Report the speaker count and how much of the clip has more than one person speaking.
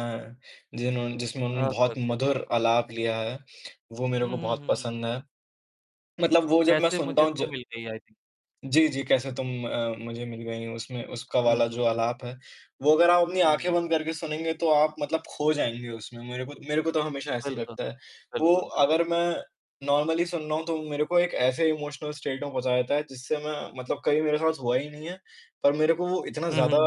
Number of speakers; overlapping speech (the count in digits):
2, about 15%